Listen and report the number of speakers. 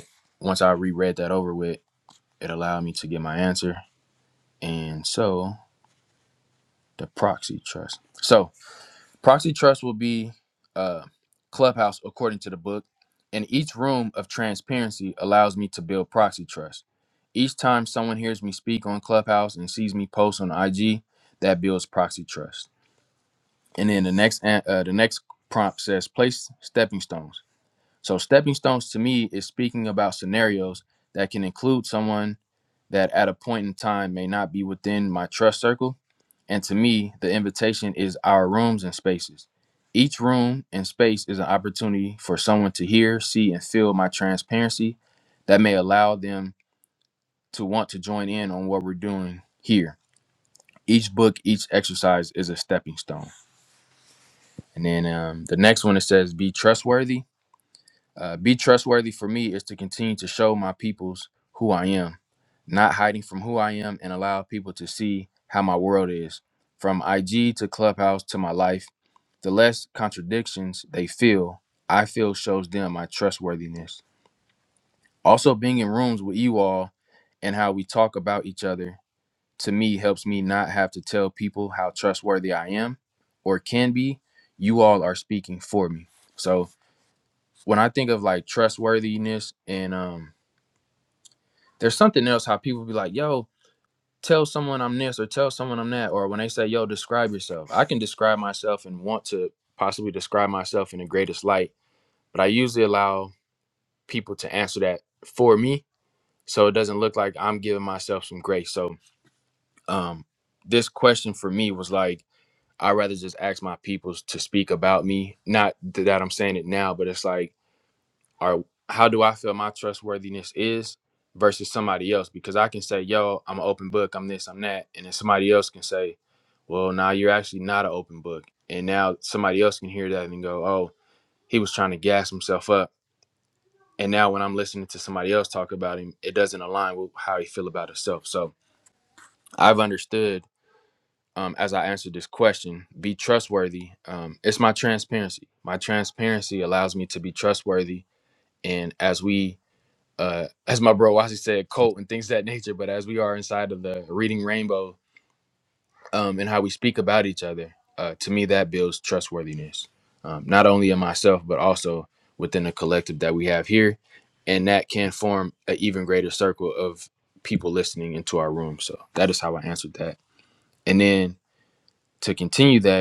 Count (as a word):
one